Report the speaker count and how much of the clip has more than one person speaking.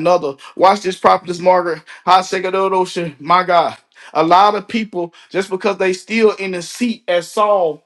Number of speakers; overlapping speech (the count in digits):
1, no overlap